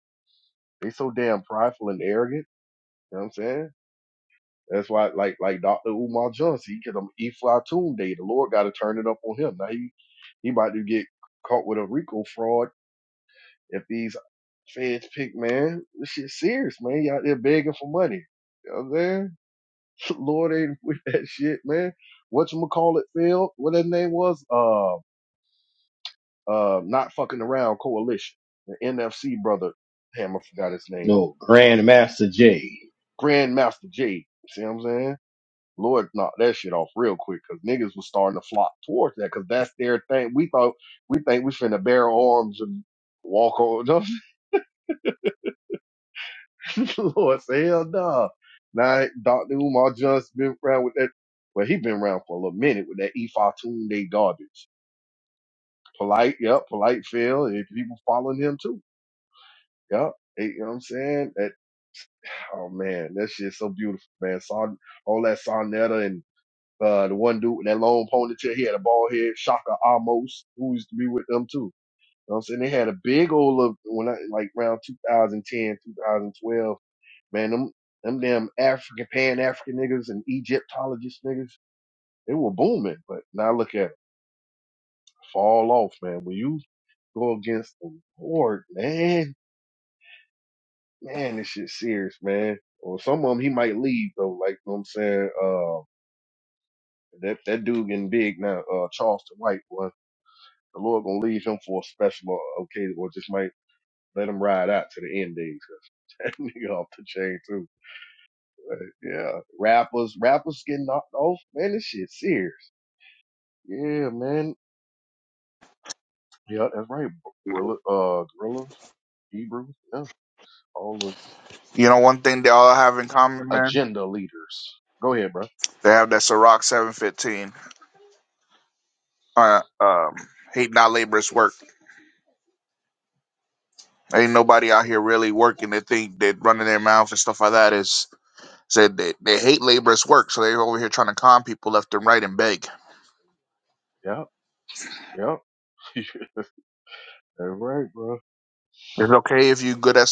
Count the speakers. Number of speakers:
3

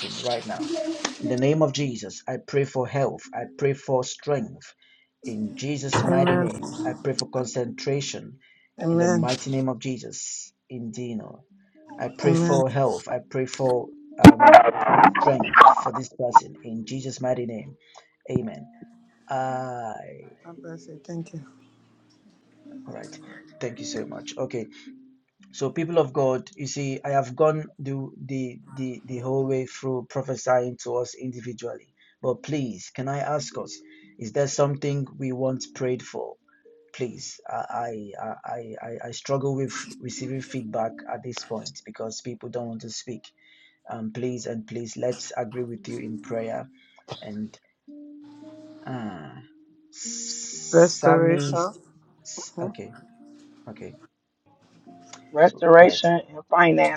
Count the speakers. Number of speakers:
3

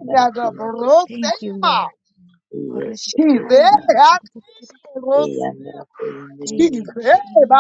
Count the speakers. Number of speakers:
3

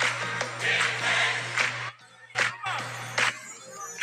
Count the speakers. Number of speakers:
0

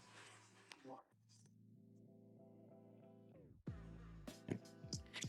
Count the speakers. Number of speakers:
0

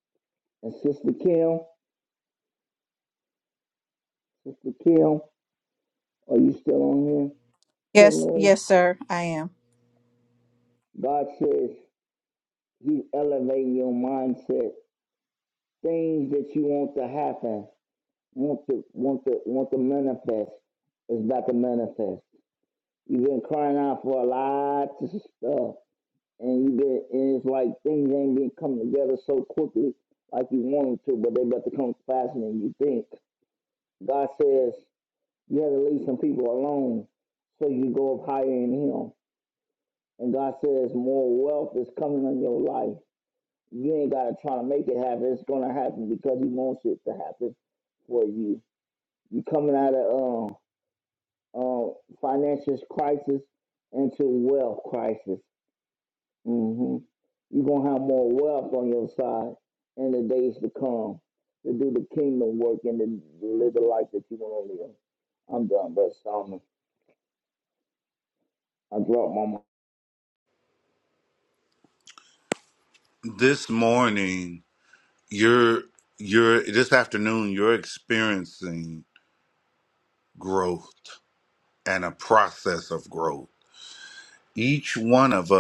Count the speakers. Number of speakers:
3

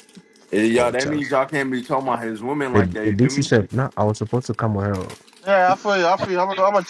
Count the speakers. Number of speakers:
3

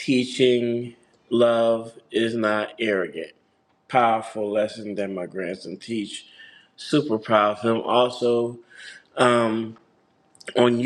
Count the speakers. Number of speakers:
1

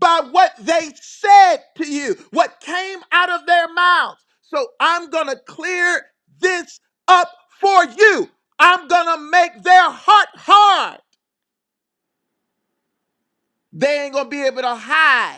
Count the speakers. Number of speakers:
1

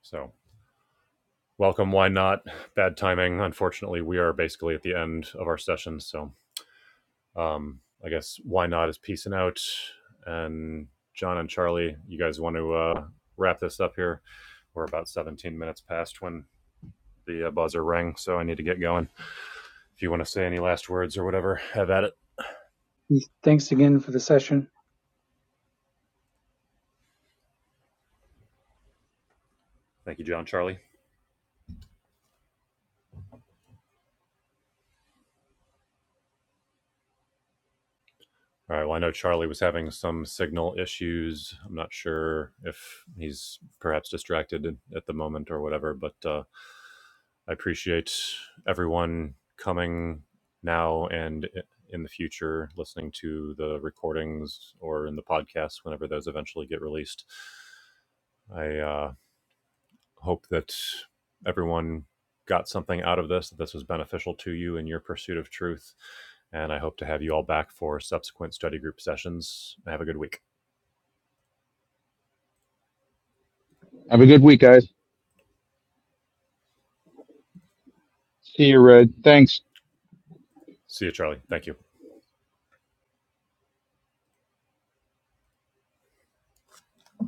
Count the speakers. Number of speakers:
3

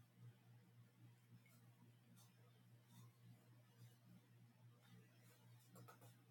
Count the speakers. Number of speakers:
0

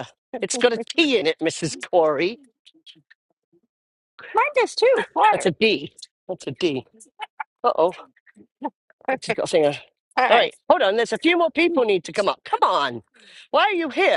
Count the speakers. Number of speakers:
2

